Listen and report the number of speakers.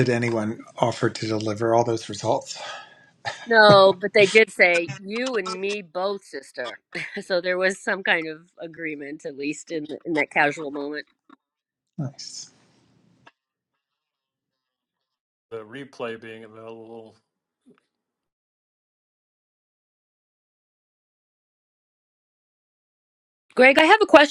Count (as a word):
three